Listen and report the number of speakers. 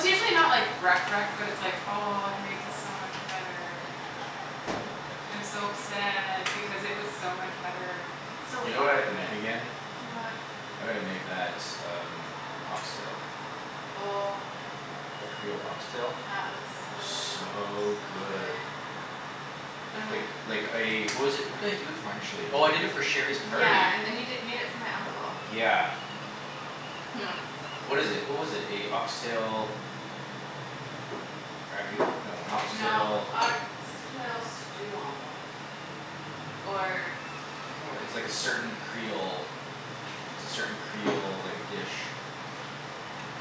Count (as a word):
three